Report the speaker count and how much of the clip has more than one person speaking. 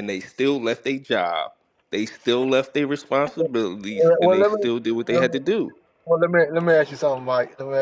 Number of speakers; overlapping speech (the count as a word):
two, about 14%